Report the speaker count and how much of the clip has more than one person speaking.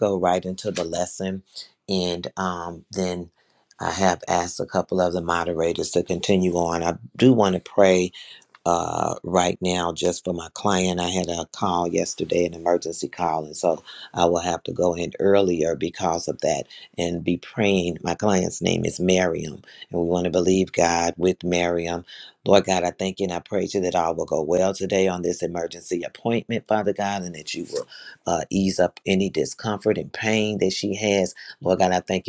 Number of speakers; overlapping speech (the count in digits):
1, no overlap